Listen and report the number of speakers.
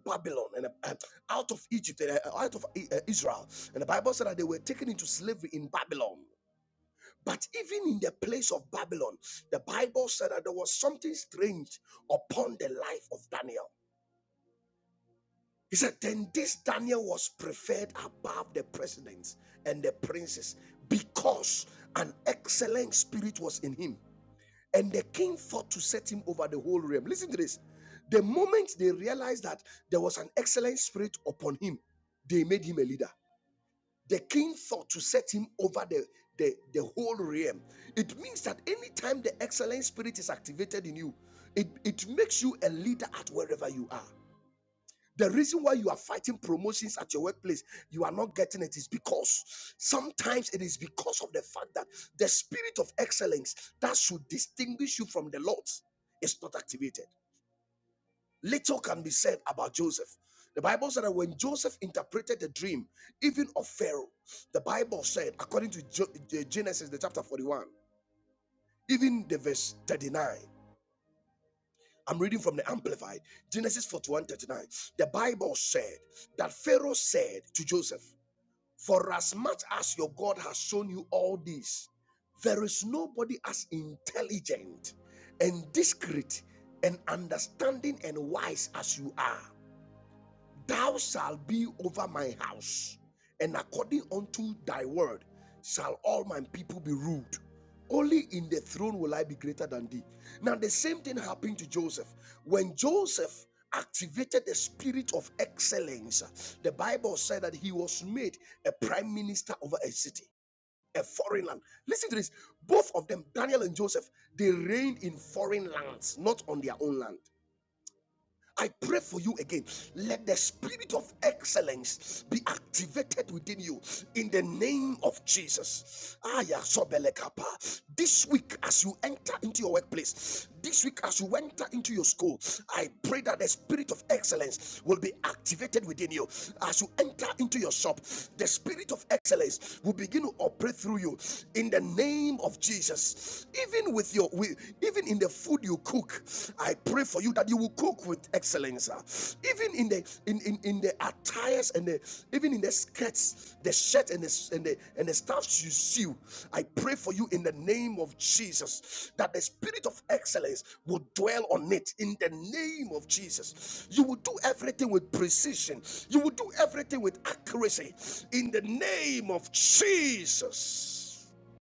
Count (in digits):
1